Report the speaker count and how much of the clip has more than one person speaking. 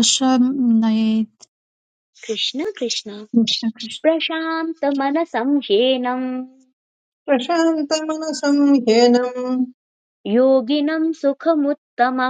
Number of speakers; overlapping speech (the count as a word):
three, no overlap